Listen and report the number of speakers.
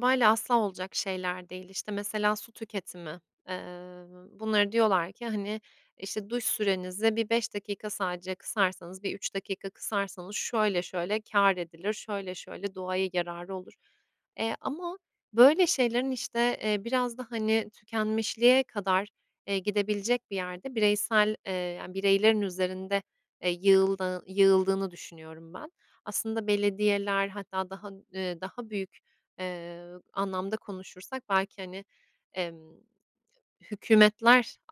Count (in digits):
1